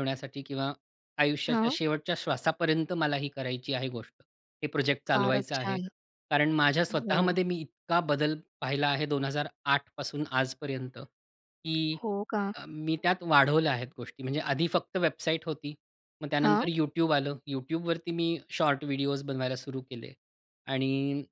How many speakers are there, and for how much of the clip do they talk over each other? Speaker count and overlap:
2, about 7%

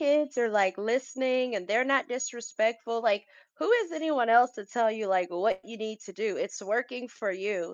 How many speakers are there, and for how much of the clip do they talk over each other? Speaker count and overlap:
1, no overlap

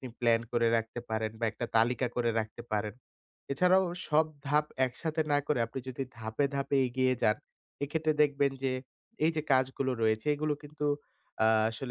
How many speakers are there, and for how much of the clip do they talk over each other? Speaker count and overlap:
1, no overlap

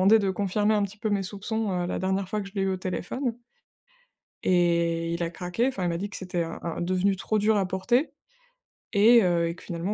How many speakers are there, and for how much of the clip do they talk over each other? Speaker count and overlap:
1, no overlap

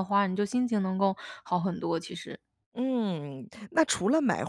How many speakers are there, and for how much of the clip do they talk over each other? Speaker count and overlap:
2, no overlap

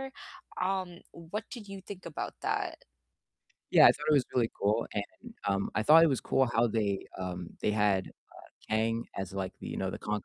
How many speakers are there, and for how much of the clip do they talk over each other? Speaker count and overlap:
2, no overlap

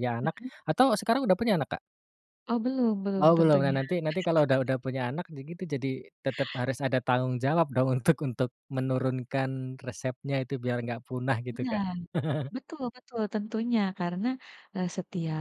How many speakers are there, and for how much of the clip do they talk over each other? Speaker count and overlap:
2, about 8%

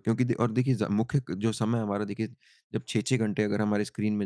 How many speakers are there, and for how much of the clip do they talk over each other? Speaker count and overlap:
1, no overlap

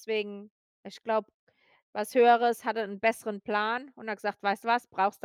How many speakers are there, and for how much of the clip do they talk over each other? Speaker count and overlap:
1, no overlap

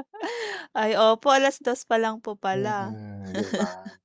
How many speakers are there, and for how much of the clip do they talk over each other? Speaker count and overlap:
2, about 10%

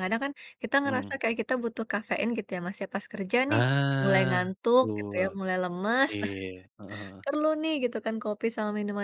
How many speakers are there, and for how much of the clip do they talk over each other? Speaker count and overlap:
2, about 16%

